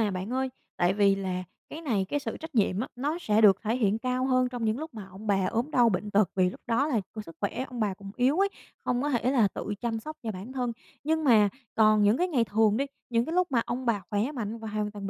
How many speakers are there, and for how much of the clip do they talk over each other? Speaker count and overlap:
1, no overlap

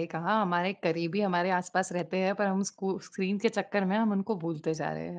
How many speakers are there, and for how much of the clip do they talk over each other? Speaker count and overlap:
1, no overlap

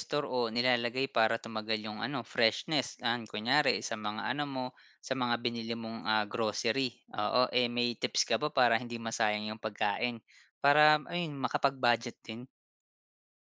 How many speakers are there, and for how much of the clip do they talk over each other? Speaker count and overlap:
1, no overlap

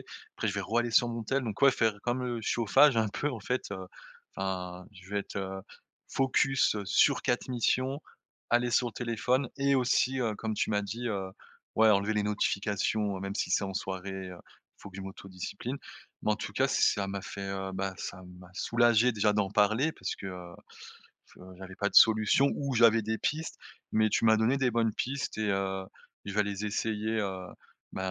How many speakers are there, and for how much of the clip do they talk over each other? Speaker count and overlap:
1, no overlap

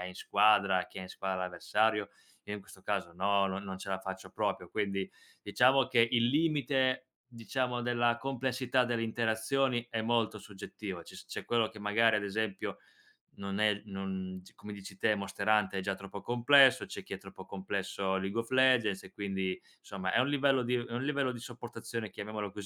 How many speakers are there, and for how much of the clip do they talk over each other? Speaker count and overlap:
1, no overlap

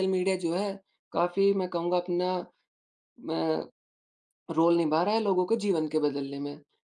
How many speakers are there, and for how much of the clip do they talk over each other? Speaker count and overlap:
1, no overlap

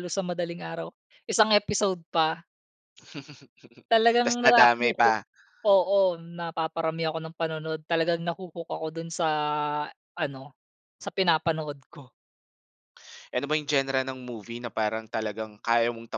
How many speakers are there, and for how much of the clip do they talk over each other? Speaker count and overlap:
2, about 6%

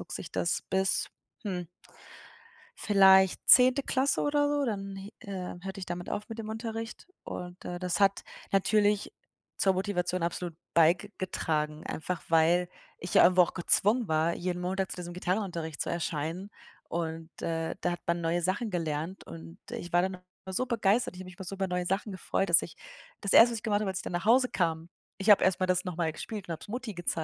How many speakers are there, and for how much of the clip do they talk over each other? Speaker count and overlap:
1, no overlap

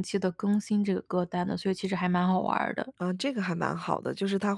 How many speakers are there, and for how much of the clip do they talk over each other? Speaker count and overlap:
2, no overlap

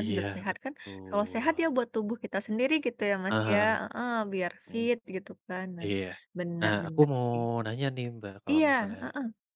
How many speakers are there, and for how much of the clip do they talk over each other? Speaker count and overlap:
2, about 30%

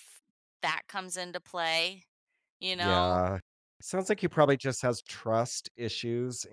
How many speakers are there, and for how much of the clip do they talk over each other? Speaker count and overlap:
2, about 6%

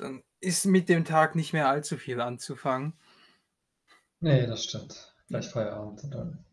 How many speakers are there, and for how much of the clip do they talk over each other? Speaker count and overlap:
2, about 2%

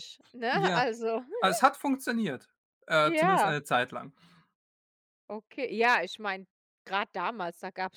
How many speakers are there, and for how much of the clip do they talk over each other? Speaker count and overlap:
2, about 10%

